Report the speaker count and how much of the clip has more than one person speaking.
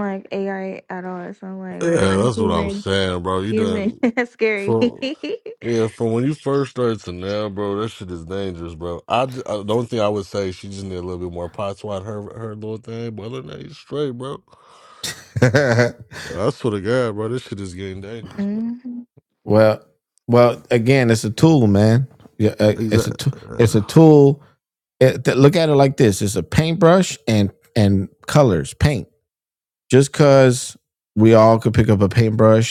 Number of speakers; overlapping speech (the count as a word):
three, about 10%